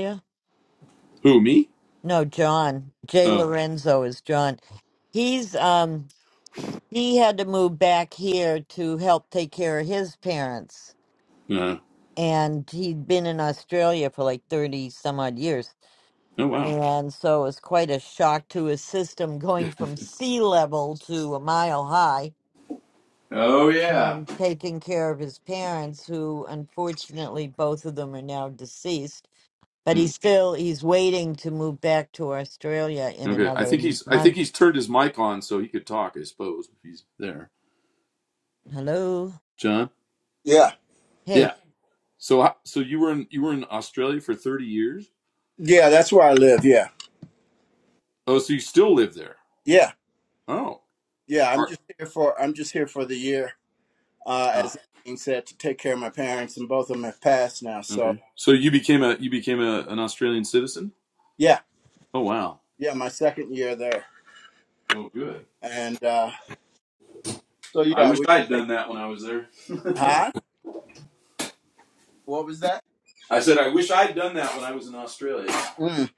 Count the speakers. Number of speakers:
3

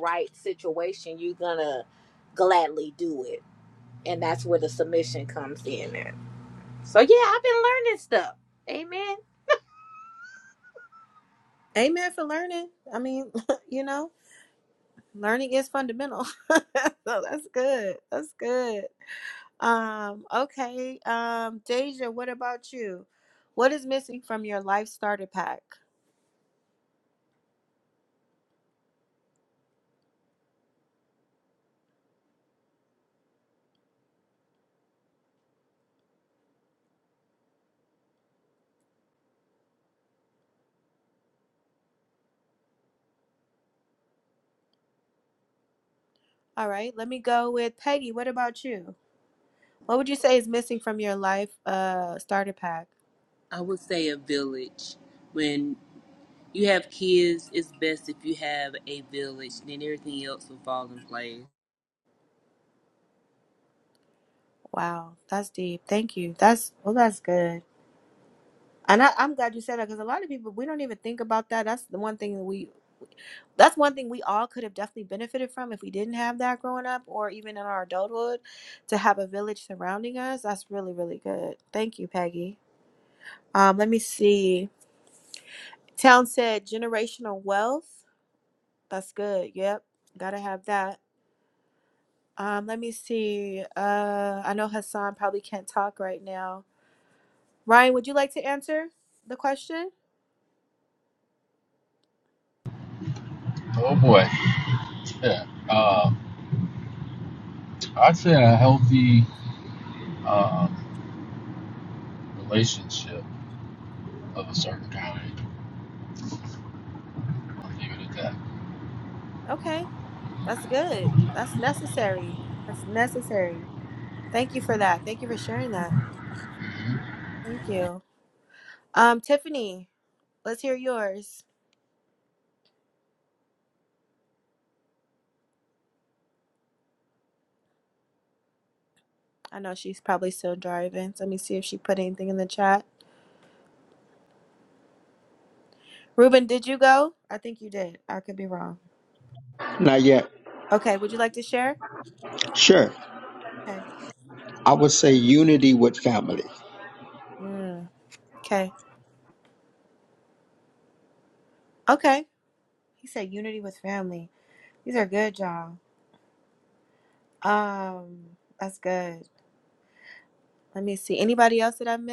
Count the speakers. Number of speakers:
5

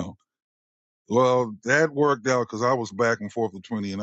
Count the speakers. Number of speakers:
1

